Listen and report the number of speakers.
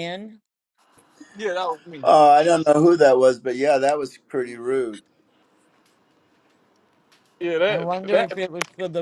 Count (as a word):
three